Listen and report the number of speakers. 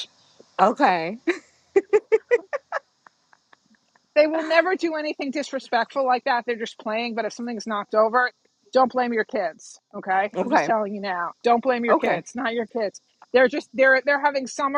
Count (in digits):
2